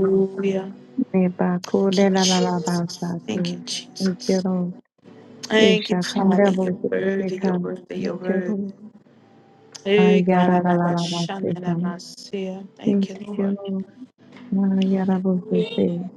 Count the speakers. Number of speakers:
2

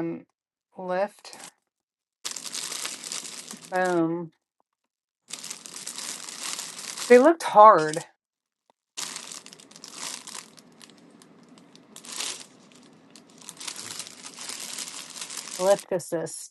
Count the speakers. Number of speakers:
1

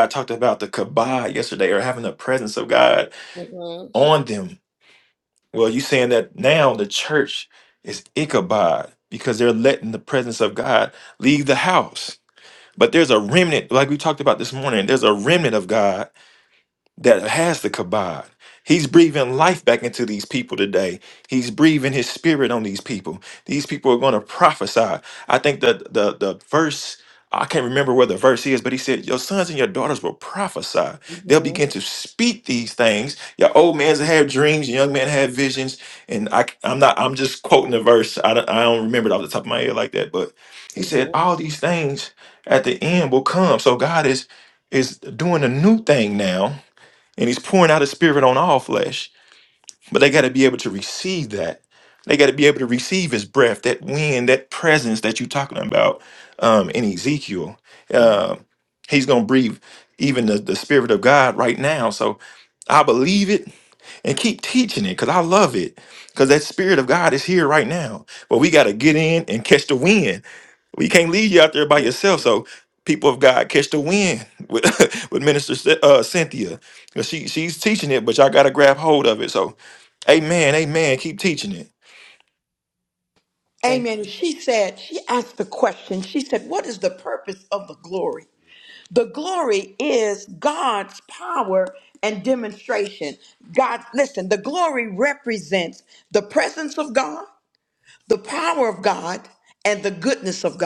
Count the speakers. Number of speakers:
3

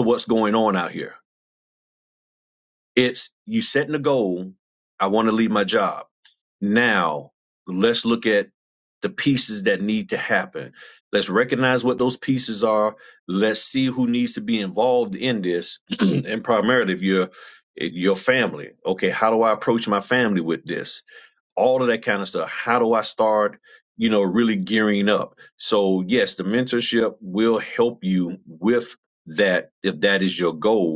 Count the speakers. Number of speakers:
1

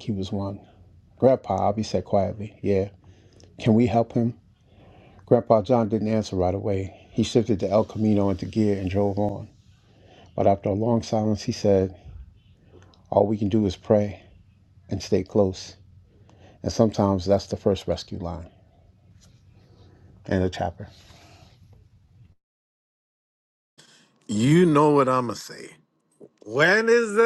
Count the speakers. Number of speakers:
2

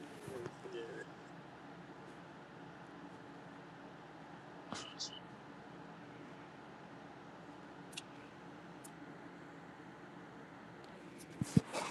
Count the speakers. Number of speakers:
0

